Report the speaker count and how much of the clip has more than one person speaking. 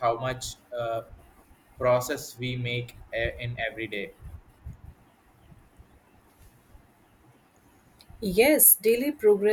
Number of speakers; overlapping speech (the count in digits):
2, no overlap